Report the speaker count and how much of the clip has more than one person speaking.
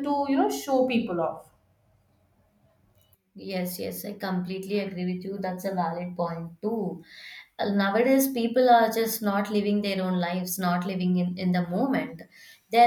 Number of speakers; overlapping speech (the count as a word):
two, no overlap